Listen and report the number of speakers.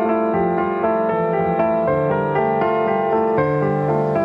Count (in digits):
0